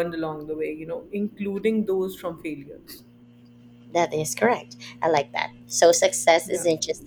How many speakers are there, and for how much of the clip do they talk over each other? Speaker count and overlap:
two, about 3%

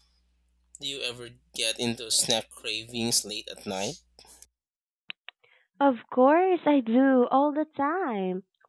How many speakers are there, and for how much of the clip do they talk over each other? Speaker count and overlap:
two, no overlap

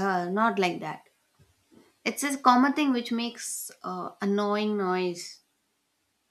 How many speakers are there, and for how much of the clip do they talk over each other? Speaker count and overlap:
one, no overlap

